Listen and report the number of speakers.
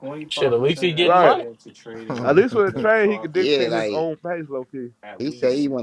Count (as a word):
three